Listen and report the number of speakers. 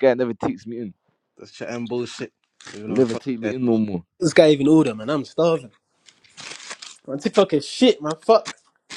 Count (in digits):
3